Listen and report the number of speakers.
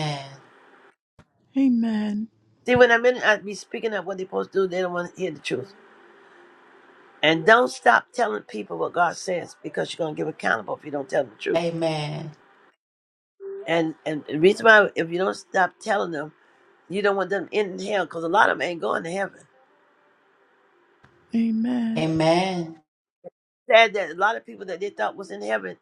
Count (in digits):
3